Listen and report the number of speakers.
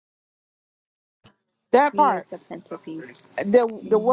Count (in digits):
2